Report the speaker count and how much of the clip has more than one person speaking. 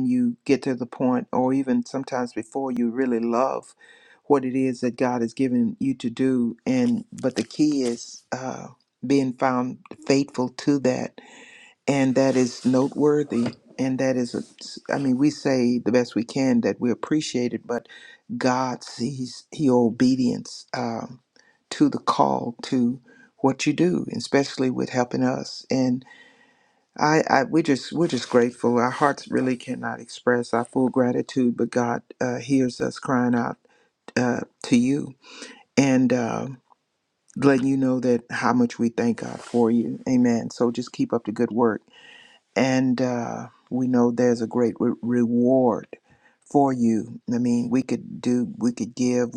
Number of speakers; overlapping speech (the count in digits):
1, no overlap